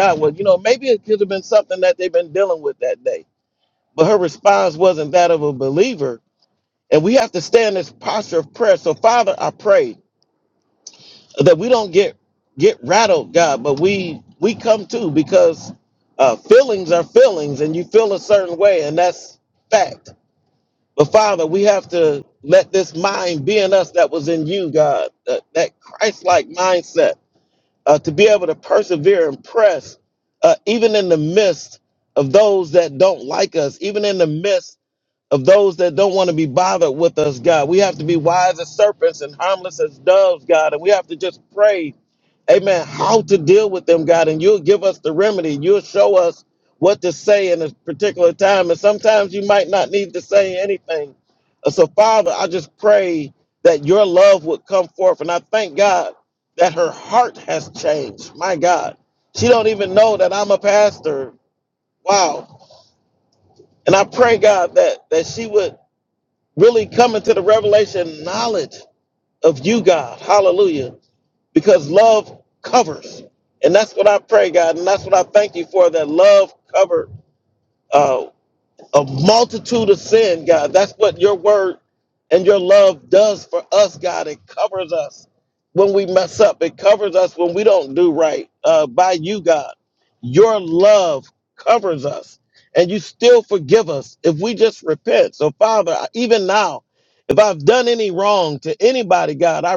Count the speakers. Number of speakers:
1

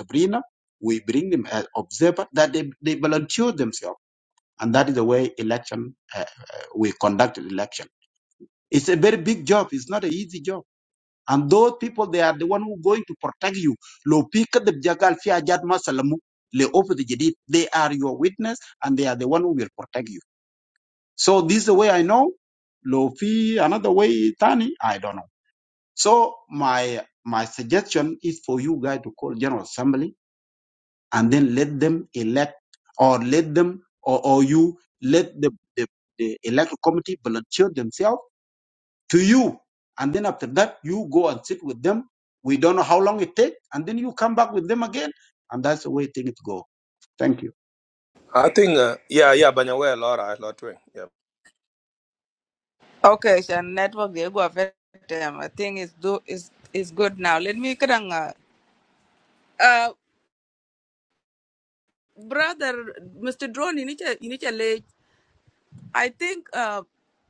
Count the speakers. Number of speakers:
3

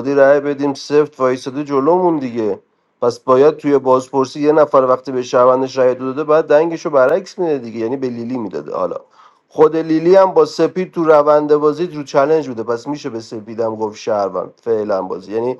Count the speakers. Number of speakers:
1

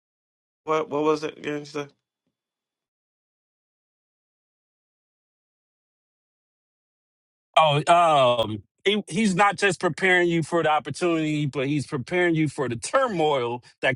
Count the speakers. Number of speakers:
2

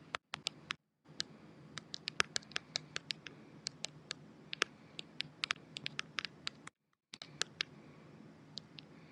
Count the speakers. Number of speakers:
0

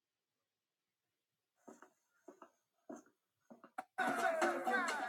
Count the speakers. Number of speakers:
0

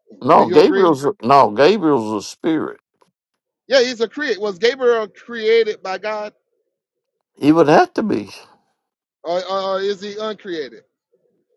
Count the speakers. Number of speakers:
2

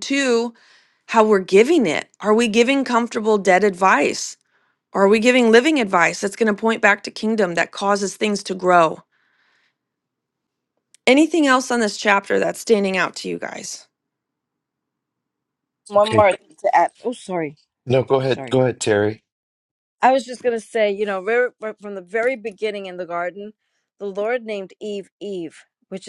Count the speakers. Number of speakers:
3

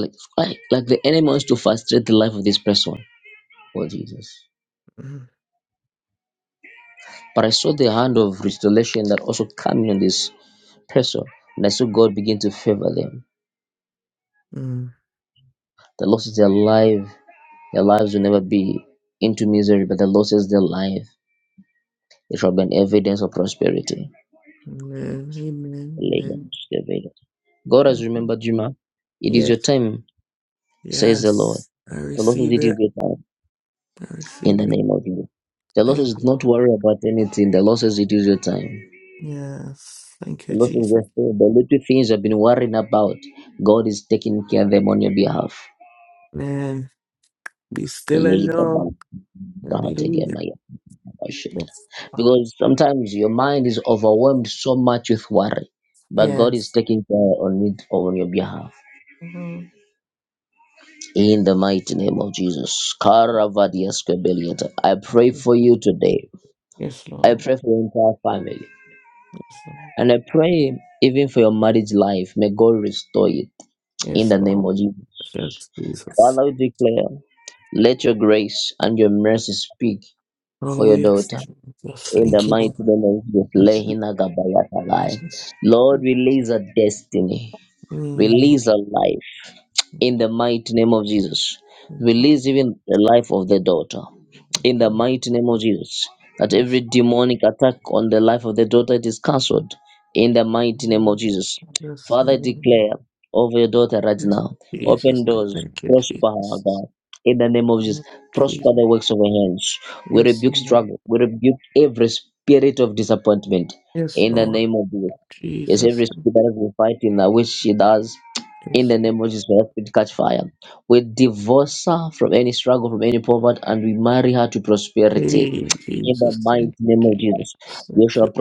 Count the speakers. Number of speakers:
2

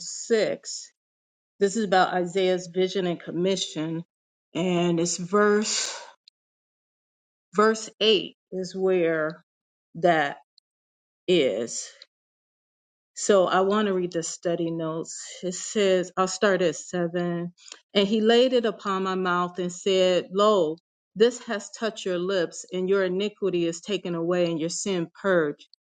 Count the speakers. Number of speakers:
1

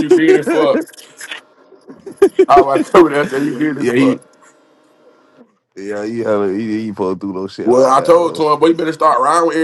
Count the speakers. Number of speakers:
2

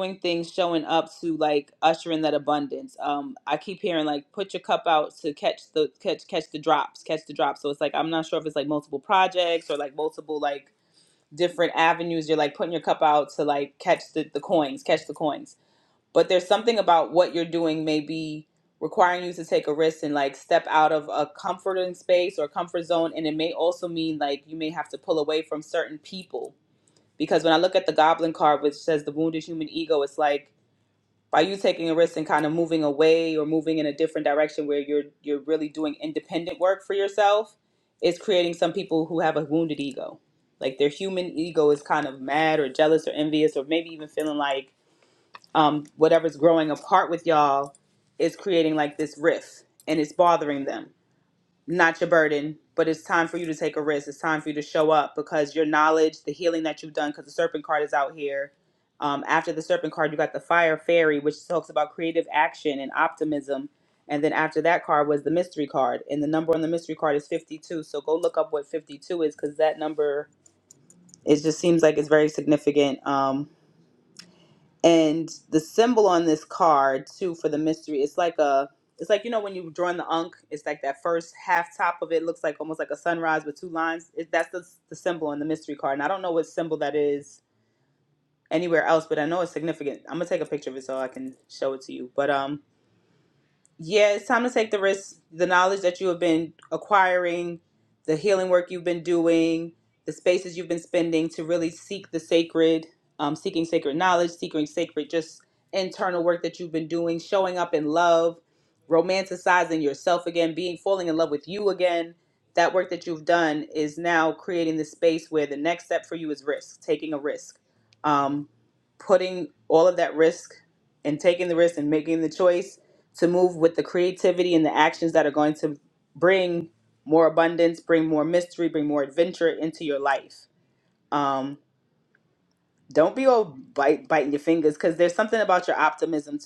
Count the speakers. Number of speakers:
1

